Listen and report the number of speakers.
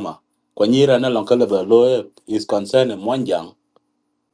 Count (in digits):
1